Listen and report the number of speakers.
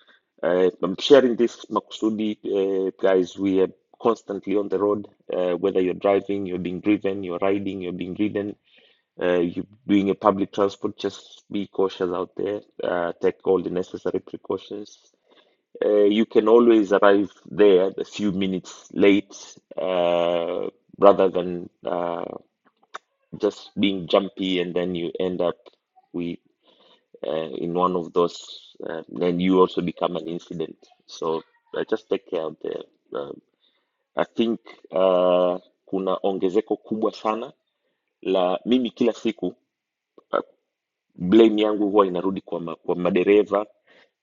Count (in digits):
1